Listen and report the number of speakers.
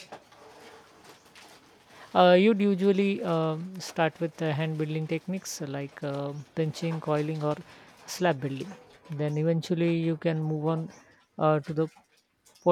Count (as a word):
one